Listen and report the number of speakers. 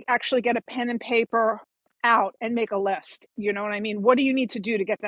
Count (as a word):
one